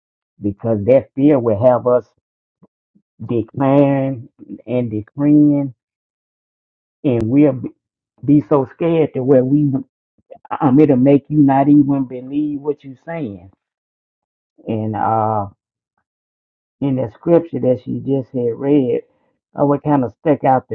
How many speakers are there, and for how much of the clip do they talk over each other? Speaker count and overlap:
one, no overlap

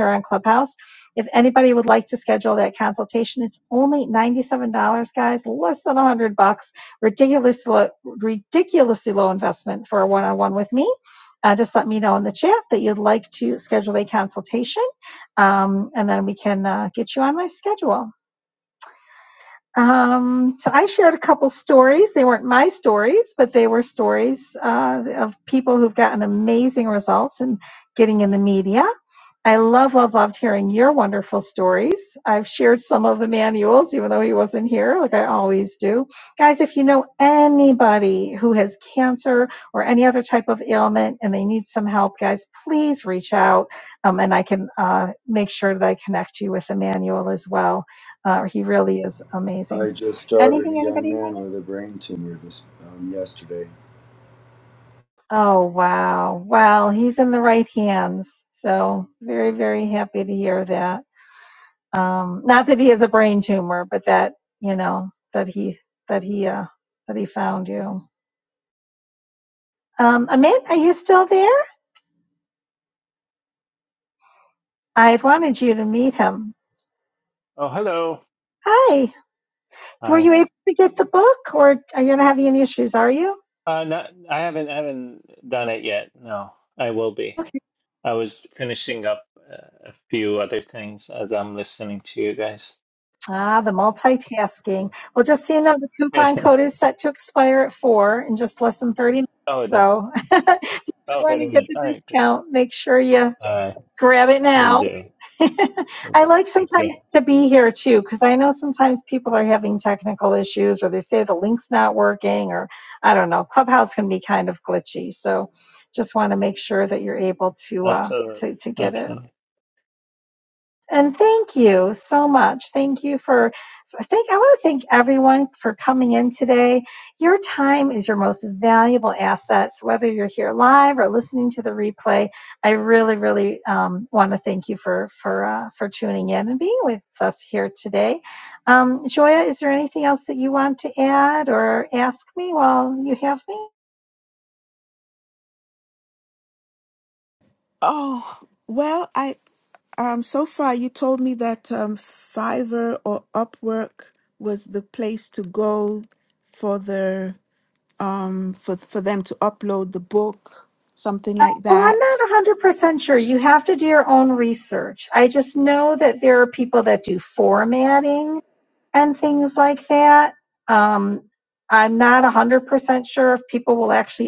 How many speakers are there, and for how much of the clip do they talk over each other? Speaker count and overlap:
four, about 3%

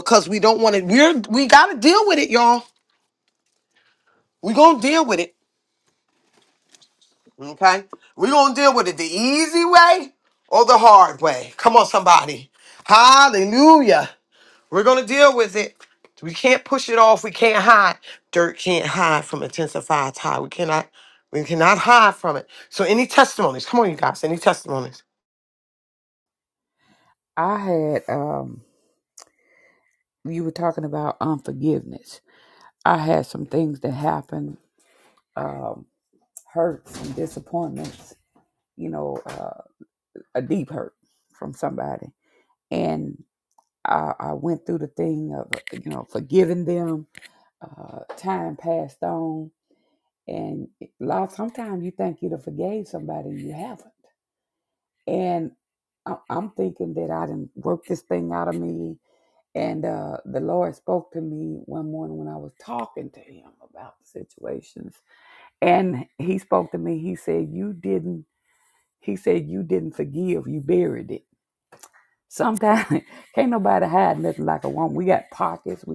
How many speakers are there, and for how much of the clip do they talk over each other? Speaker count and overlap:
two, no overlap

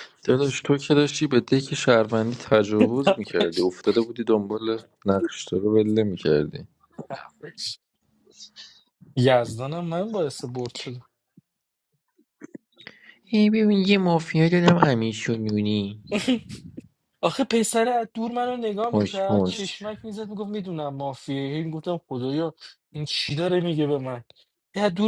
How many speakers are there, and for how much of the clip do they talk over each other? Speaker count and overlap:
two, about 6%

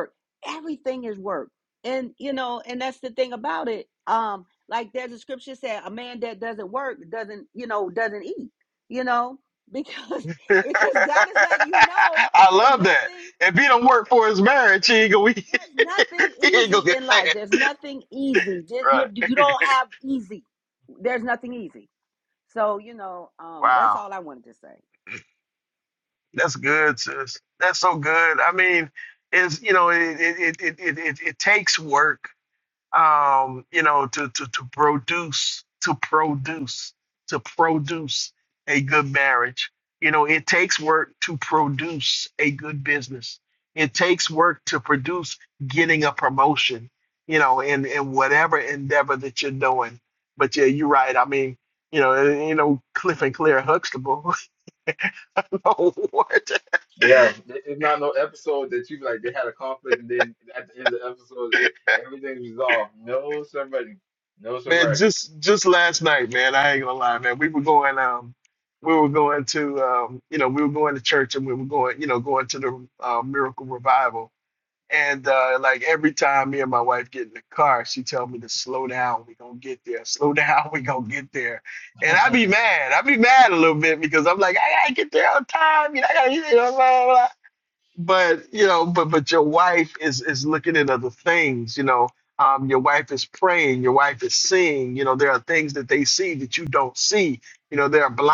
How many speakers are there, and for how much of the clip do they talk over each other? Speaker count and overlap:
three, about 3%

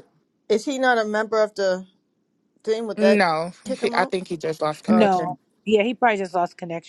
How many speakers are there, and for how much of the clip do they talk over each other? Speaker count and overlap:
three, about 17%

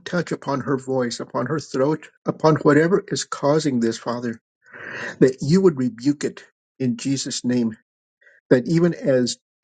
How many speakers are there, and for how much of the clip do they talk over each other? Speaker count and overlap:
one, no overlap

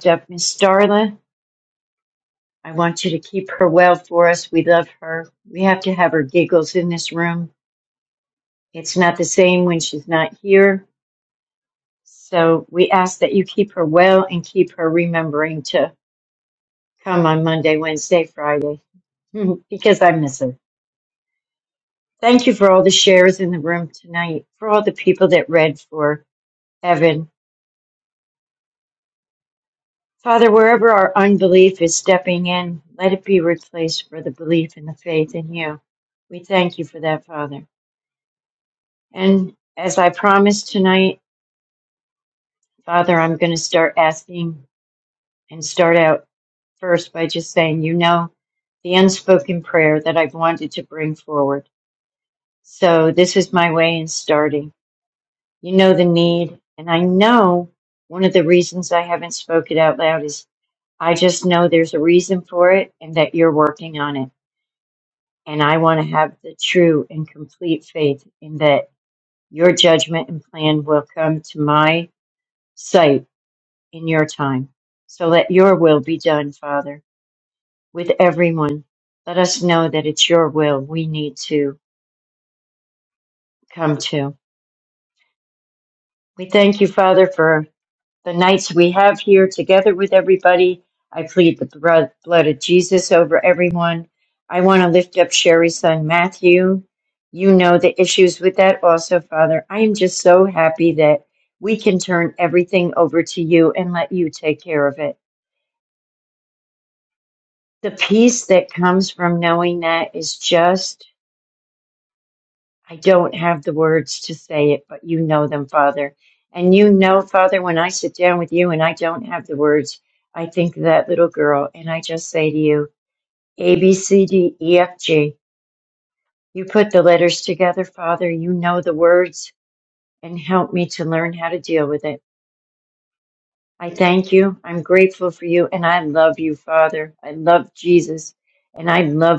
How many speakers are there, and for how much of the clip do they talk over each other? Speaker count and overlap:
one, no overlap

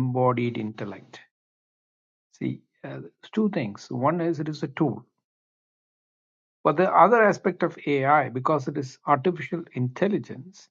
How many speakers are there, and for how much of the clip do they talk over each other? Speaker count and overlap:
one, no overlap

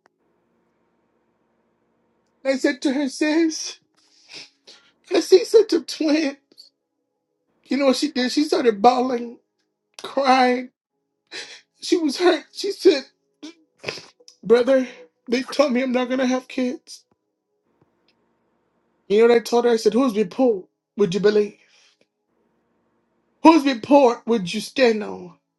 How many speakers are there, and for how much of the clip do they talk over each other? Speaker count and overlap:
one, no overlap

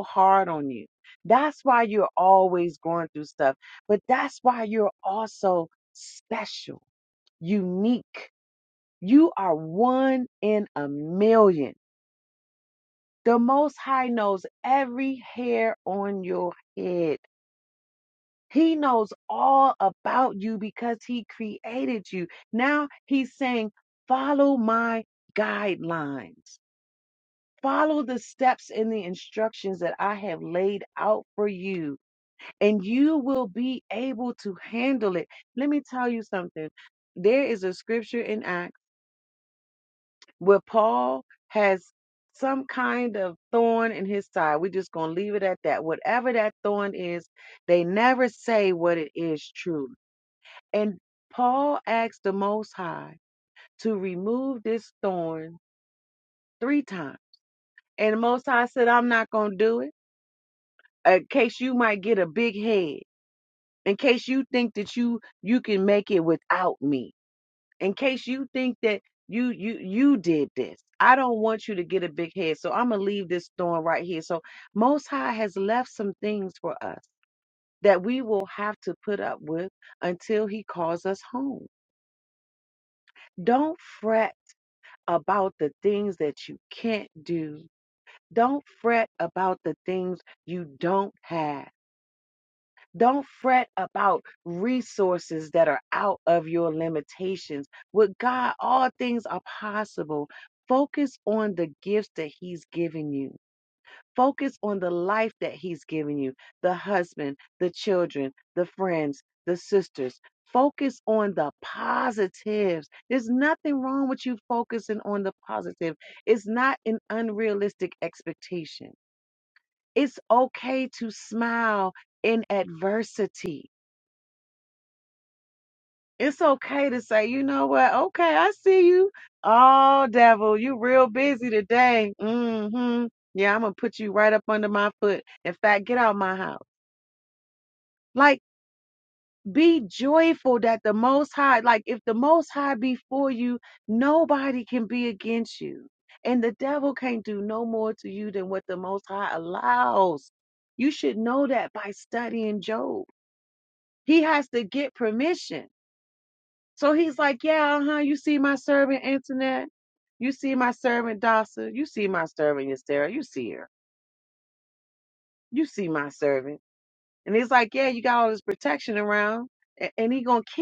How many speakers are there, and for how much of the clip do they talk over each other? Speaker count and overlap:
one, no overlap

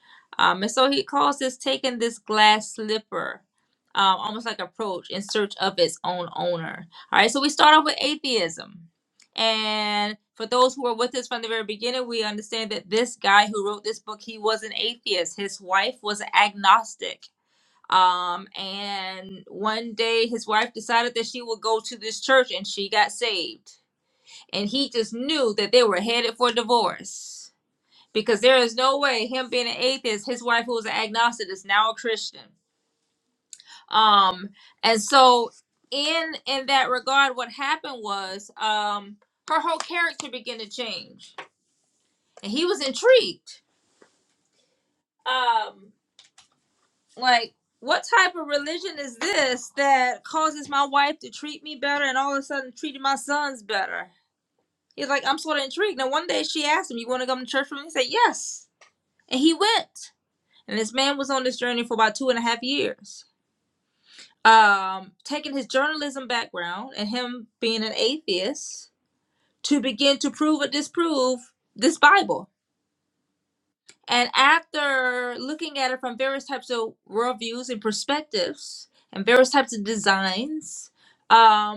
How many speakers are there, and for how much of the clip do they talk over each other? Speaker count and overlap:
one, no overlap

